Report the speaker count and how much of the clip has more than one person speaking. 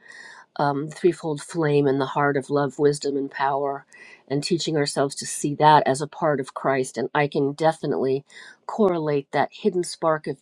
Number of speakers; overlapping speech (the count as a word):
one, no overlap